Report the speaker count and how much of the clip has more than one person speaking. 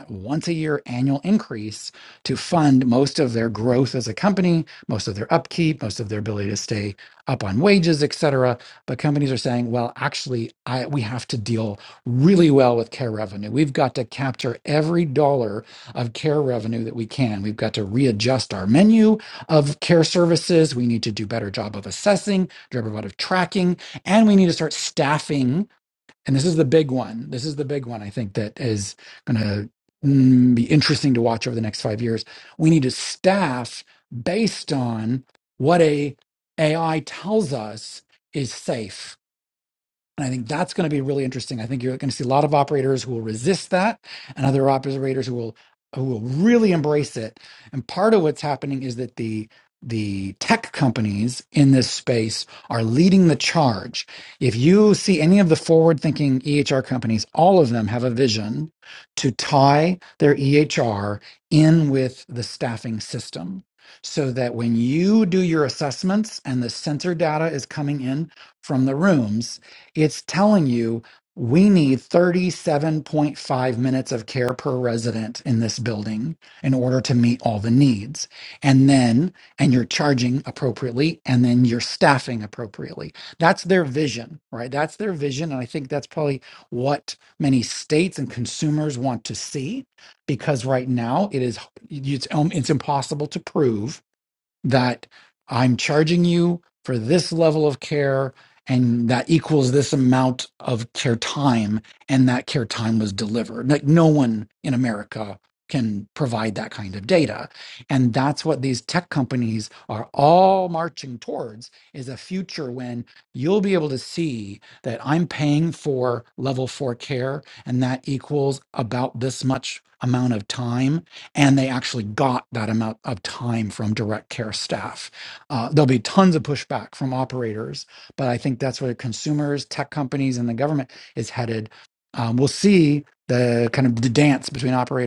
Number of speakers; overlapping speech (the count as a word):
one, no overlap